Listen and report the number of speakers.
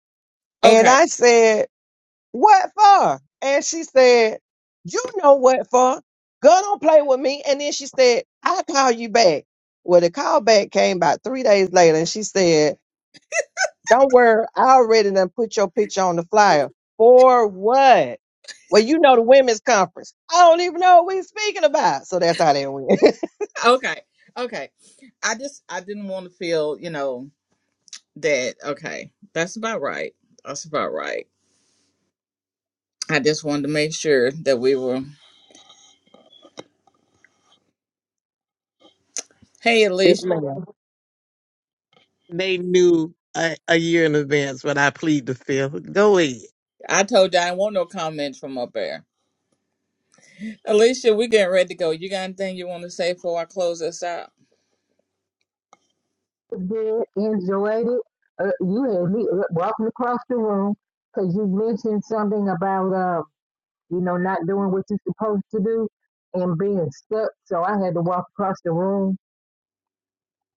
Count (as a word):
four